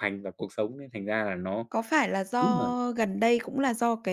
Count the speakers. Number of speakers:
2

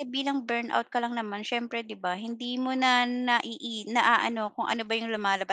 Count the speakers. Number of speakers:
1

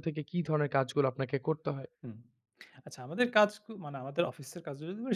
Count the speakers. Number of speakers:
2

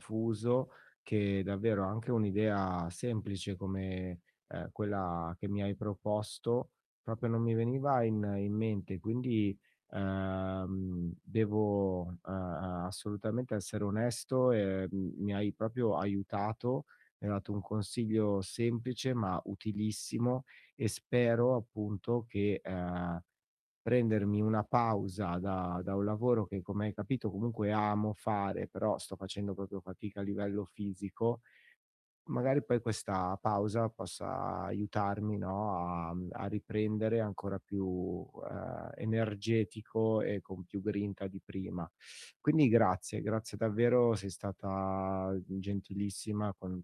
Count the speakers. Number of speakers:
1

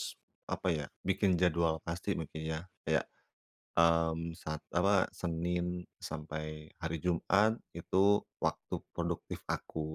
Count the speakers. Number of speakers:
1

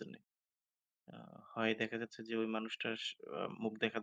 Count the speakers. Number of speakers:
1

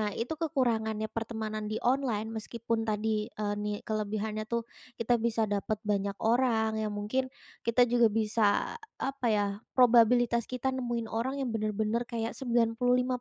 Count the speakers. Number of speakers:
1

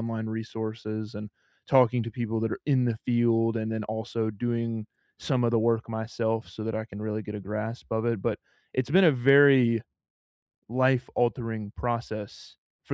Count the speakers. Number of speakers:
1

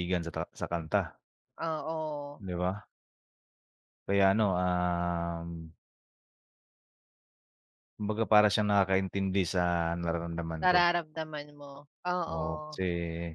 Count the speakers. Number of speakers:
2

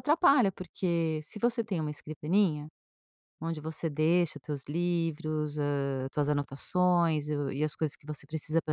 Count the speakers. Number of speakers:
1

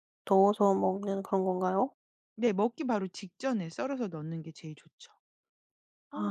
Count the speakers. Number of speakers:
2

